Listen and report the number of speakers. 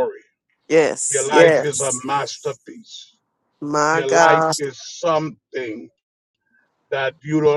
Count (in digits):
2